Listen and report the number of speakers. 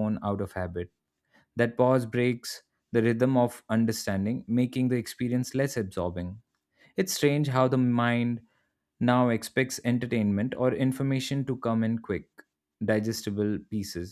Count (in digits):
1